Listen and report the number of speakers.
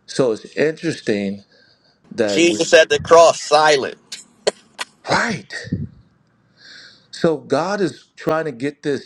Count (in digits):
2